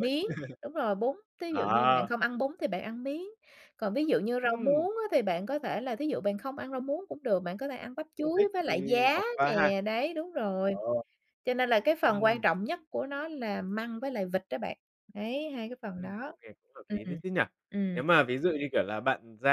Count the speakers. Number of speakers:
two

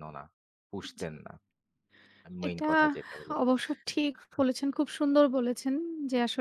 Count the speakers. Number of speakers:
two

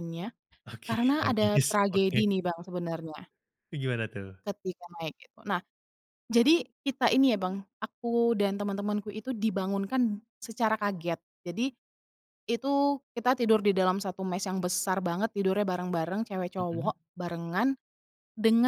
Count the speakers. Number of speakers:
two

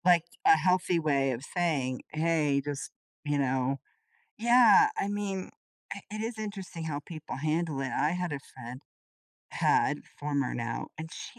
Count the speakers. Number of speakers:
one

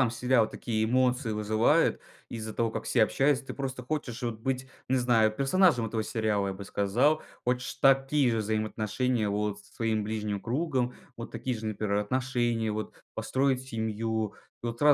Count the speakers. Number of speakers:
one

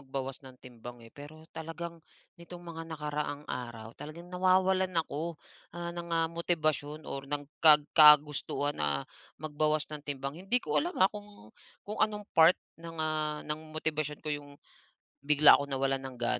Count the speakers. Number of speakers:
one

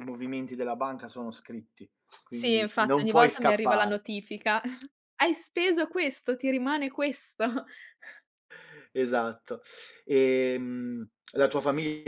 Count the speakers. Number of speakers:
two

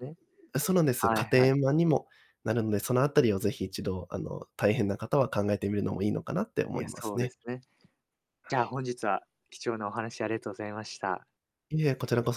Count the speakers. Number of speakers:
two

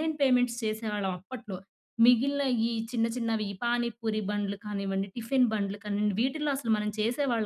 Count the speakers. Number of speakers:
one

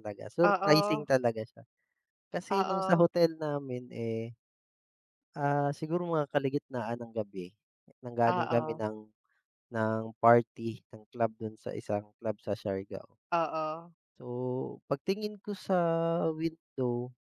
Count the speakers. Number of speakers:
two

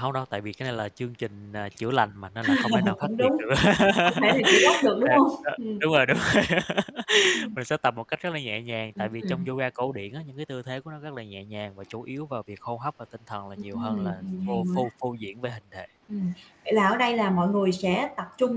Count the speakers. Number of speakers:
two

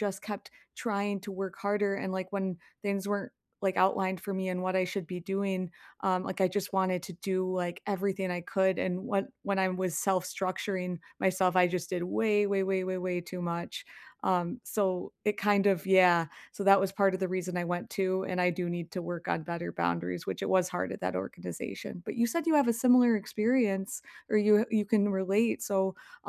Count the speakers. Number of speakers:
one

